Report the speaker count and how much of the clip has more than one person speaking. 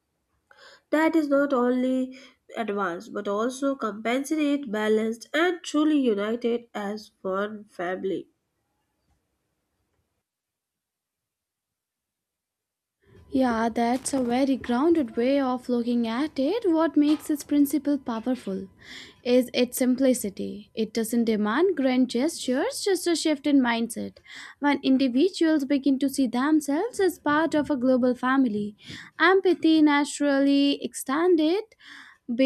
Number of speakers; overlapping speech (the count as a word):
two, no overlap